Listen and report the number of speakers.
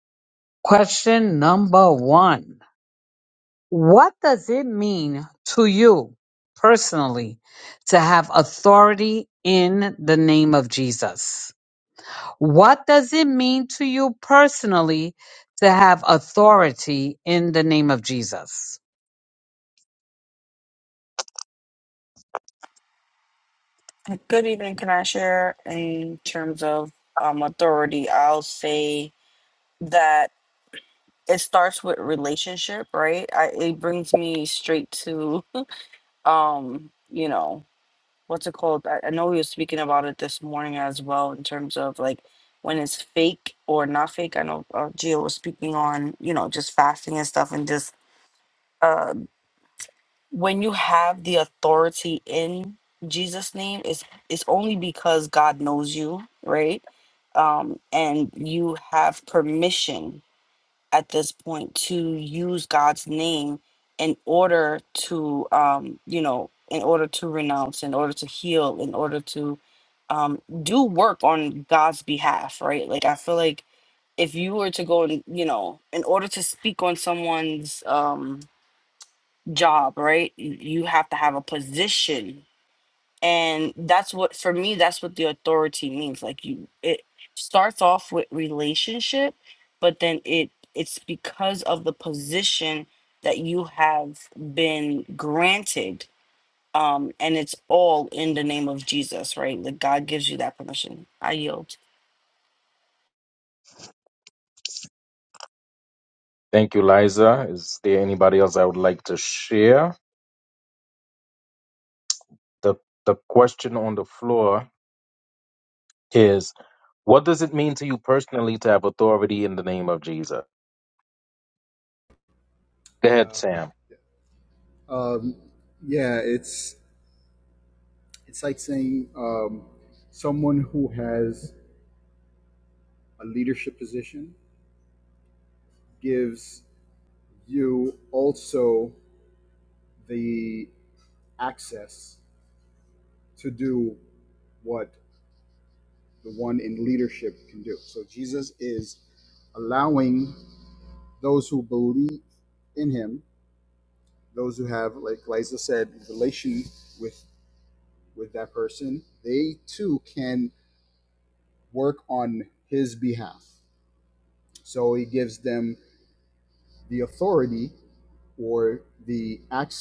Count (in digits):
4